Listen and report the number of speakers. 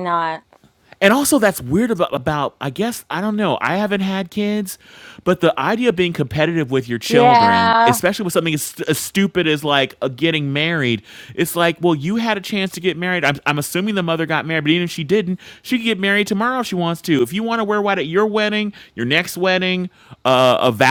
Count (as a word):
two